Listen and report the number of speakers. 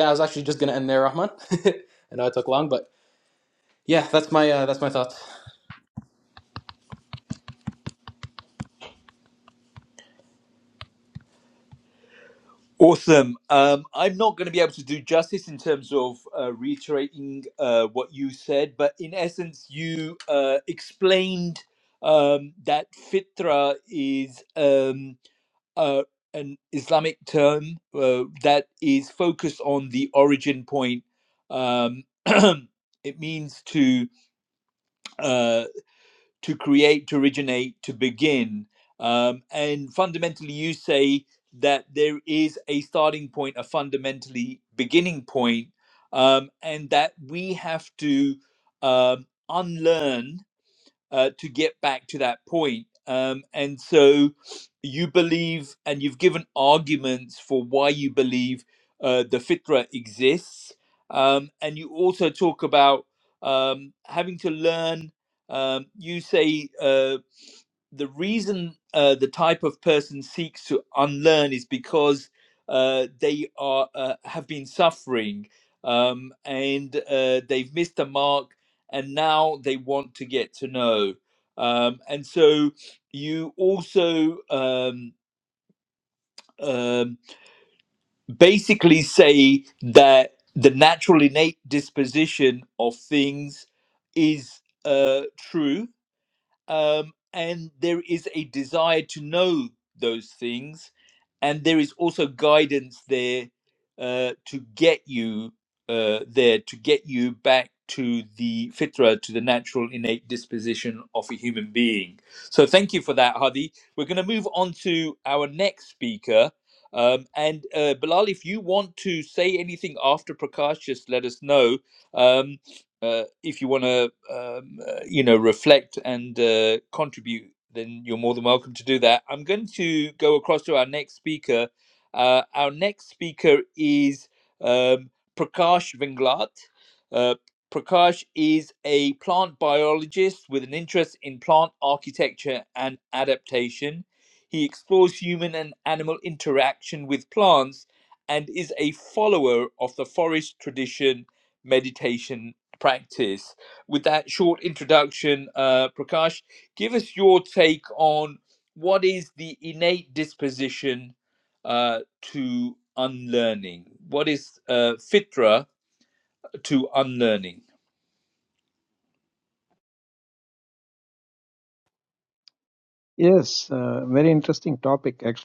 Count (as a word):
three